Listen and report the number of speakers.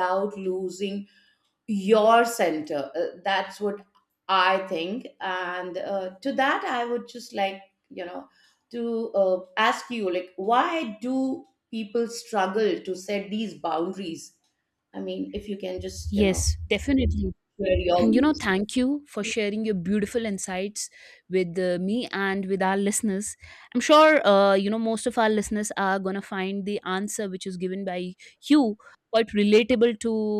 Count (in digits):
2